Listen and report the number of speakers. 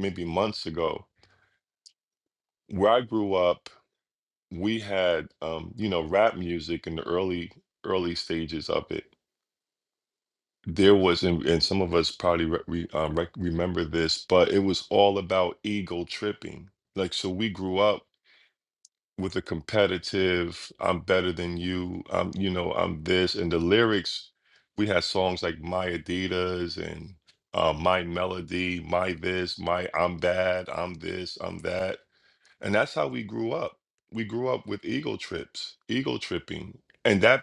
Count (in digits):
1